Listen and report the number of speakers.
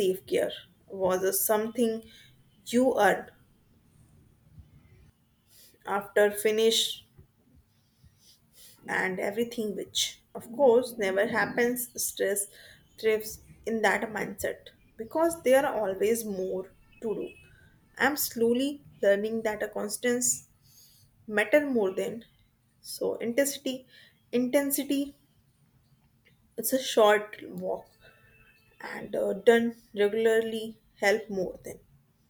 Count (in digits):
1